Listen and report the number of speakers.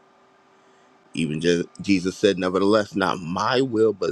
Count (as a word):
one